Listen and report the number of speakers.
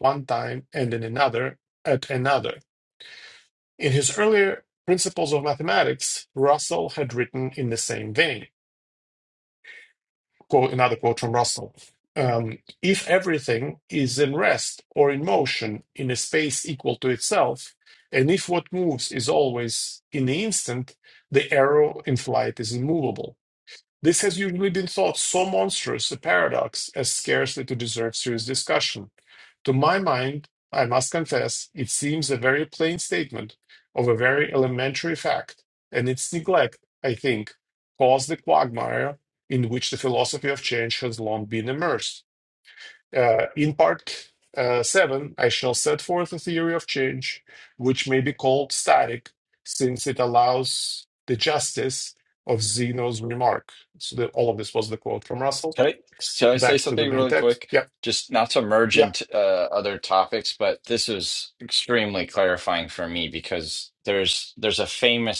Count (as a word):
two